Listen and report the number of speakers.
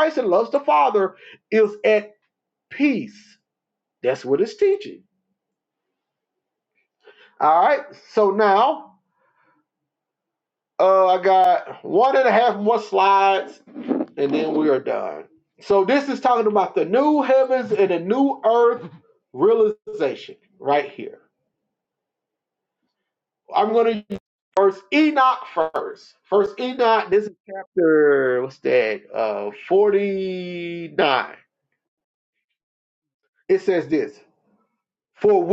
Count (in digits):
1